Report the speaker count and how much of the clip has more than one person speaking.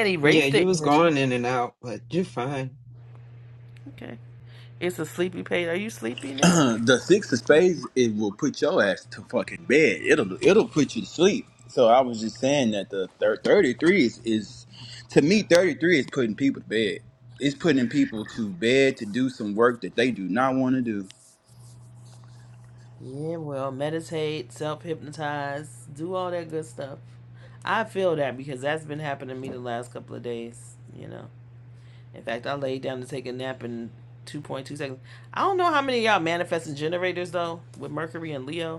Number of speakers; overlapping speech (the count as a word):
three, about 2%